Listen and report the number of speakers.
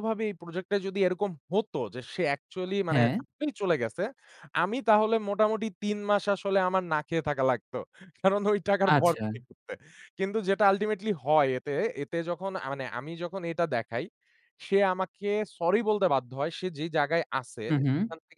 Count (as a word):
two